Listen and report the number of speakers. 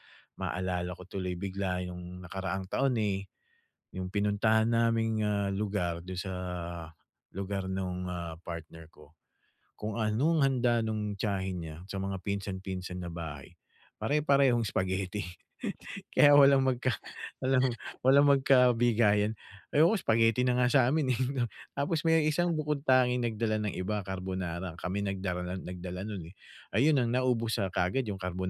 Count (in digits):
1